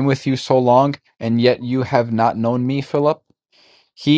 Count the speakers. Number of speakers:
1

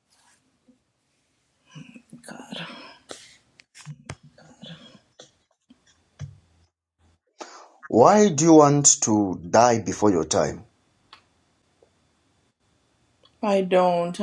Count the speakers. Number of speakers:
2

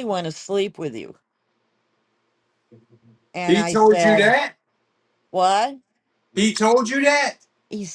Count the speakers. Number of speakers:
2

